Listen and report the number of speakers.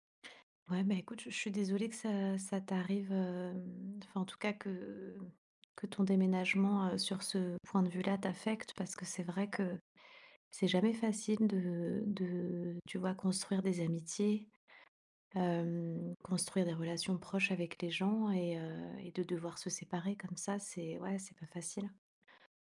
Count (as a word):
one